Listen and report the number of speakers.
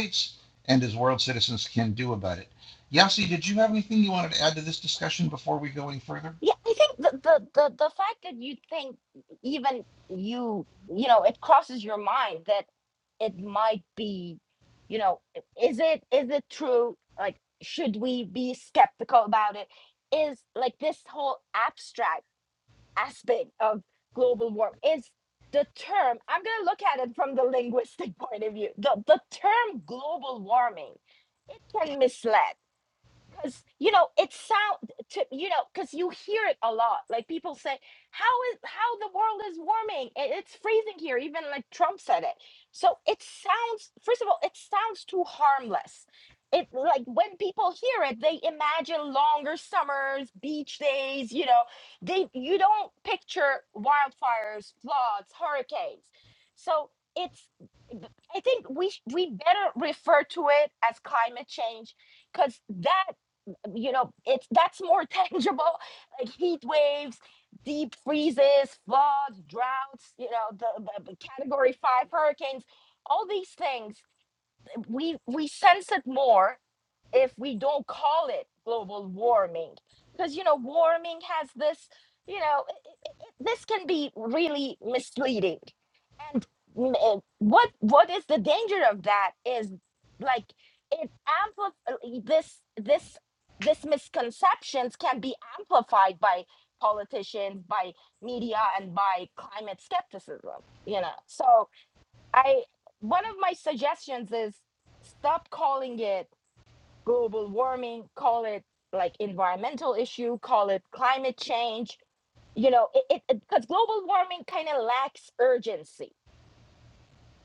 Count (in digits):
2